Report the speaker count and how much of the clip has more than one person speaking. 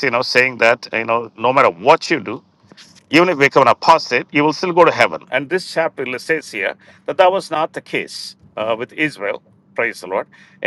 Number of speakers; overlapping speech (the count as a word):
one, no overlap